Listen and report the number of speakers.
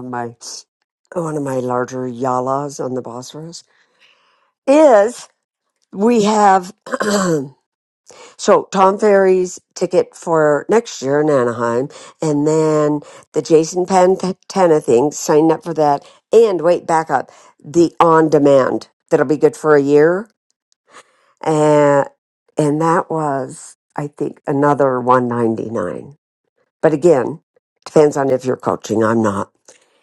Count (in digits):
1